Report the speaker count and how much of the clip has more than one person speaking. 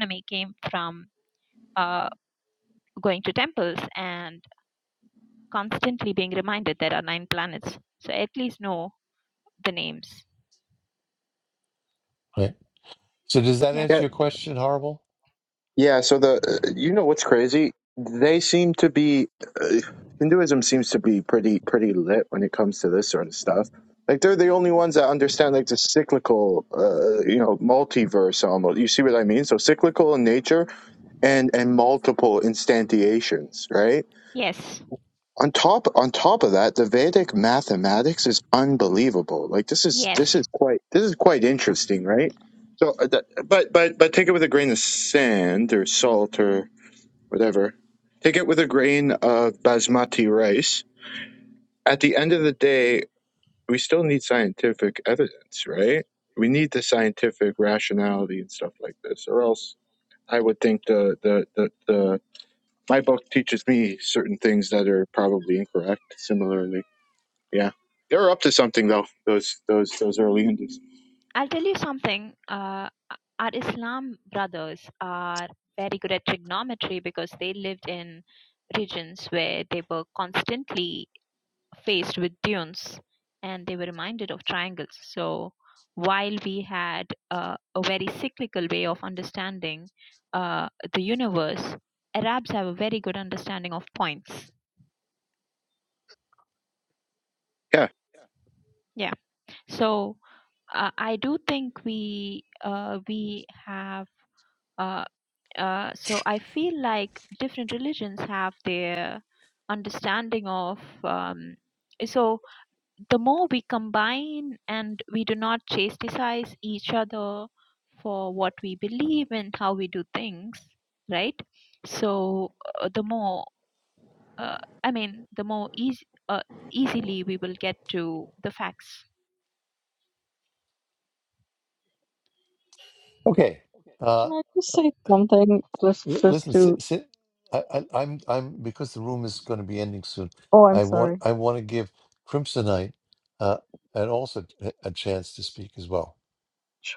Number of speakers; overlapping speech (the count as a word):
four, about 1%